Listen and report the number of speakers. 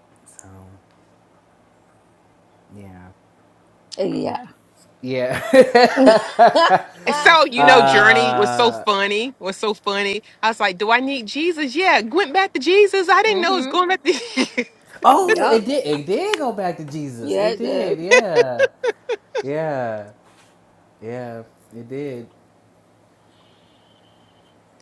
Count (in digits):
3